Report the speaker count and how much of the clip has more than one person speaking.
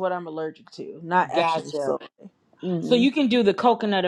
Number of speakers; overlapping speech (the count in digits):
2, about 19%